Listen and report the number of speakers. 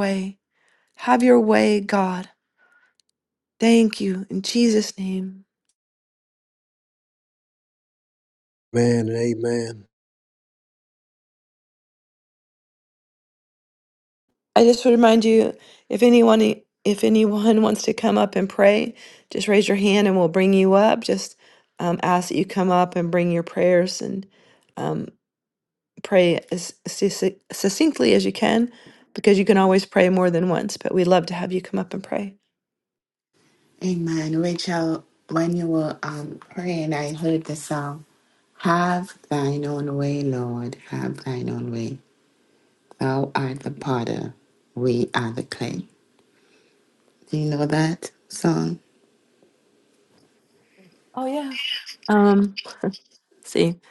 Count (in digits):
3